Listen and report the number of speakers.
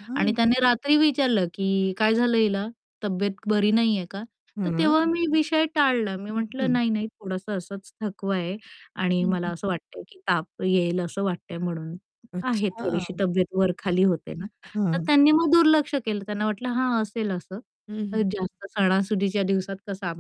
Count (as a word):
two